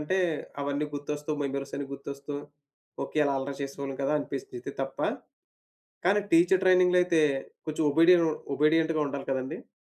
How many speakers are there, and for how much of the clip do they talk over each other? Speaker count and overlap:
1, no overlap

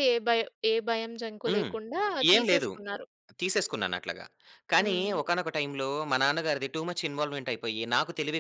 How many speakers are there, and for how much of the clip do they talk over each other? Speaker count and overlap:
2, about 14%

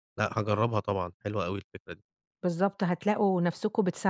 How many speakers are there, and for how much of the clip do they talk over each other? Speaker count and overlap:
2, no overlap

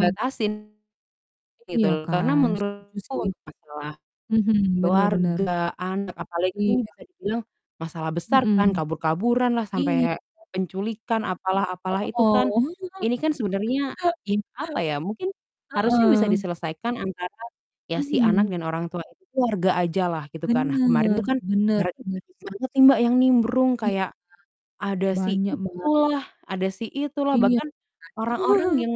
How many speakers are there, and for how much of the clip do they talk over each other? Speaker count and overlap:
2, about 22%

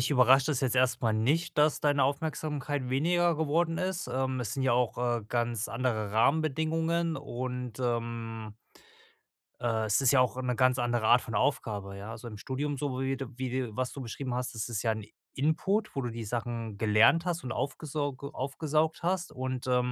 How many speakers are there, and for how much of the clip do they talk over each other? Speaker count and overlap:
1, no overlap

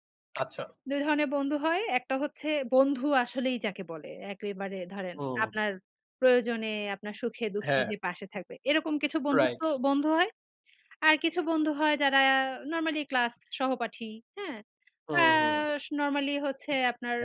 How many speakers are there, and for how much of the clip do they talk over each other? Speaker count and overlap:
2, about 6%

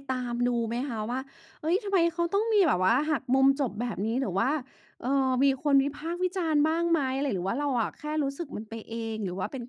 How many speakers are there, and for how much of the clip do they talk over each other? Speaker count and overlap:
1, no overlap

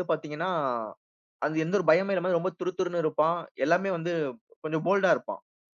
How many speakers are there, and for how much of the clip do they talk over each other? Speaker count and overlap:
1, no overlap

